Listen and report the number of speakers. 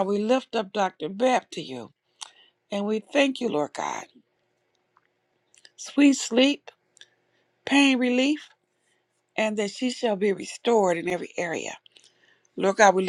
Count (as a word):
one